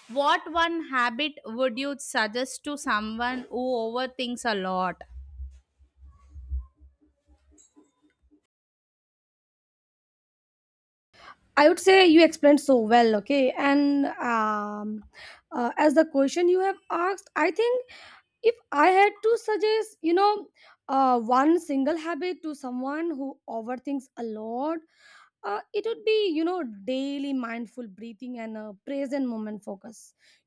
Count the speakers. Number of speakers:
2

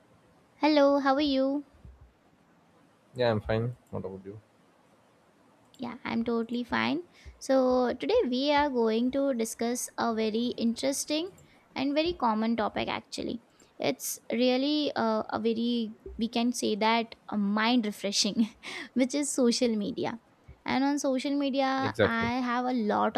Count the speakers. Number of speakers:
2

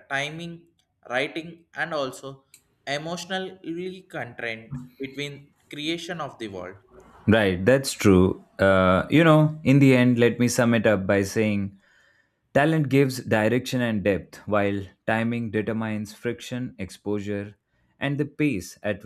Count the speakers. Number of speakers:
2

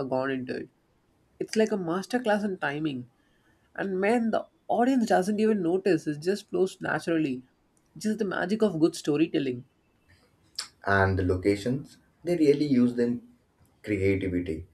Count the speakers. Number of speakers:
2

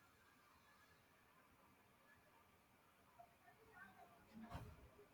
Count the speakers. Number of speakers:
0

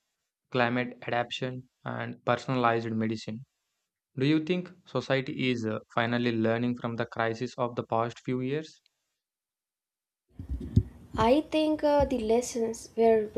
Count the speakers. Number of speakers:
2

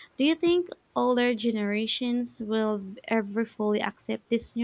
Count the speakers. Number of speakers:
1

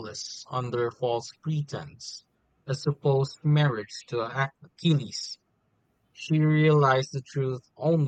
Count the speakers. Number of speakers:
1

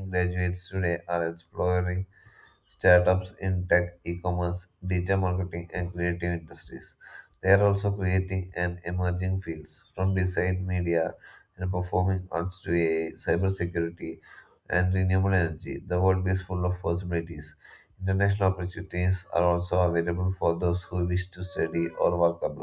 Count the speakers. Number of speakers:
1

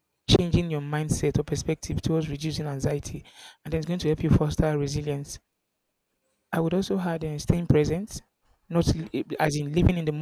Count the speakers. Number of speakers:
1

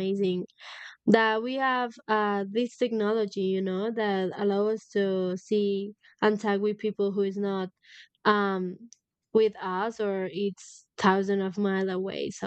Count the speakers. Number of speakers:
1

